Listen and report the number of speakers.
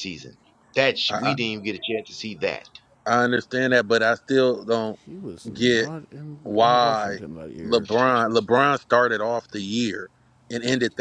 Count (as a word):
three